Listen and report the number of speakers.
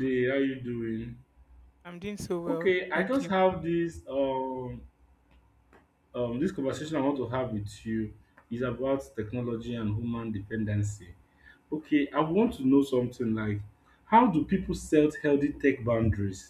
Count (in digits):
2